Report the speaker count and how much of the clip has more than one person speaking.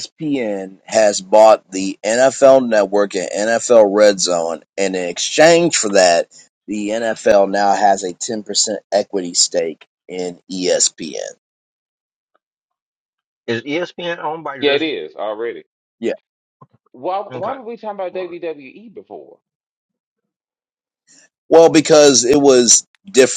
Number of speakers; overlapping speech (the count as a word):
three, about 4%